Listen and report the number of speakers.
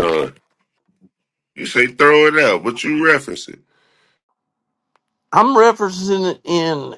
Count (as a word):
two